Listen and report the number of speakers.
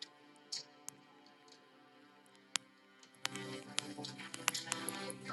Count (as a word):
zero